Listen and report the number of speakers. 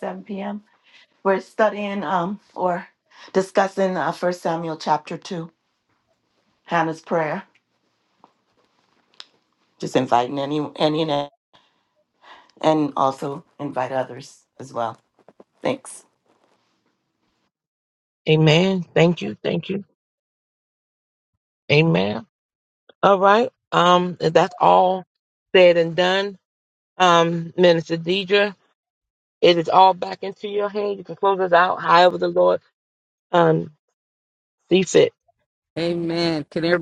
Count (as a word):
three